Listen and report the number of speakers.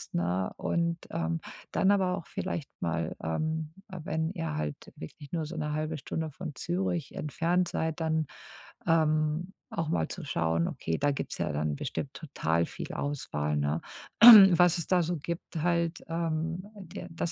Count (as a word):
one